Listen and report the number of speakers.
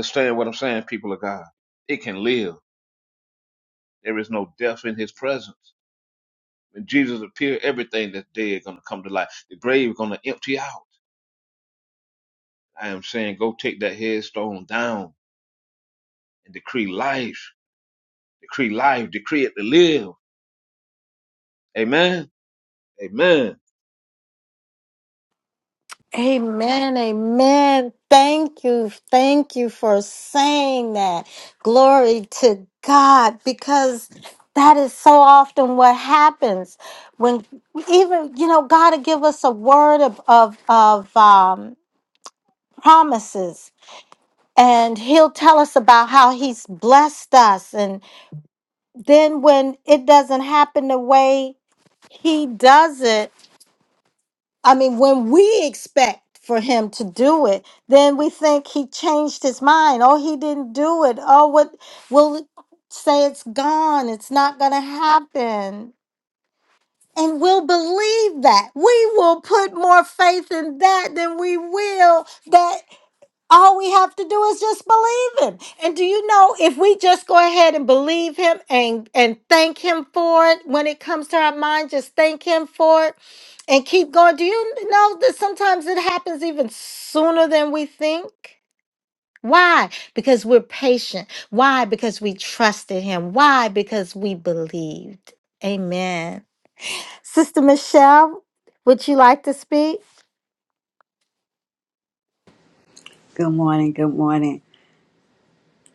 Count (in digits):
3